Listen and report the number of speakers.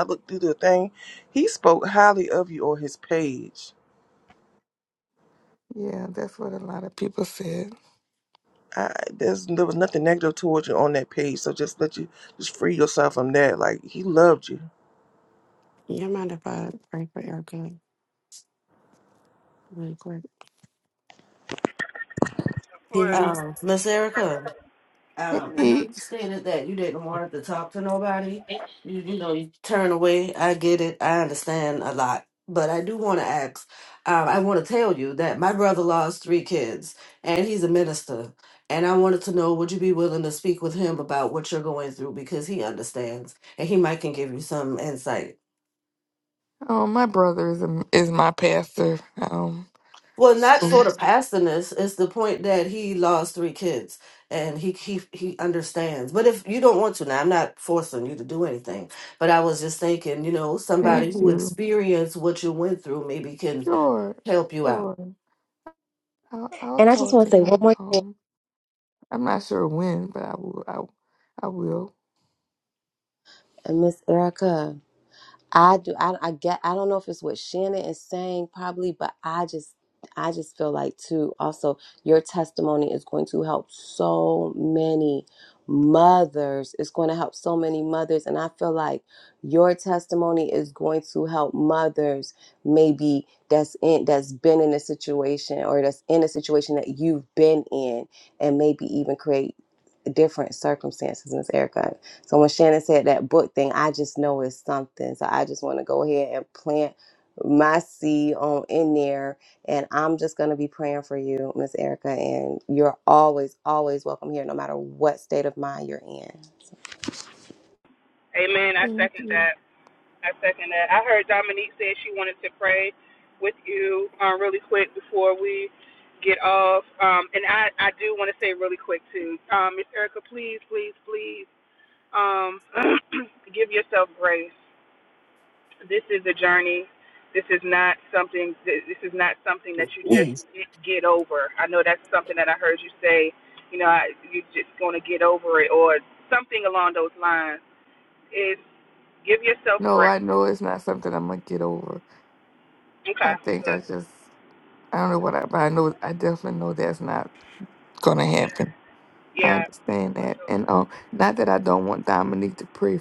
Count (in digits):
6